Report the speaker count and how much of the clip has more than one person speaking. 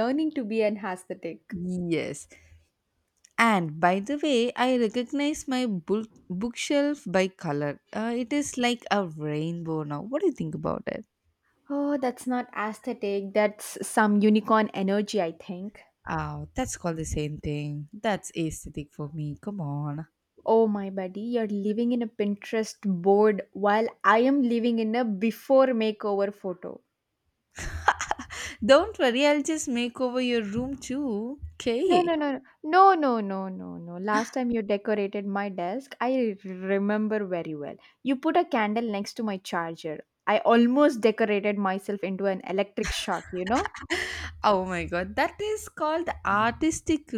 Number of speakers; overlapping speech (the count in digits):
2, about 1%